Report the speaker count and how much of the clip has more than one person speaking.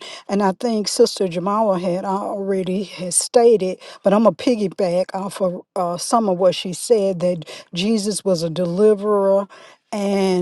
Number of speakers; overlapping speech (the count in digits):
1, no overlap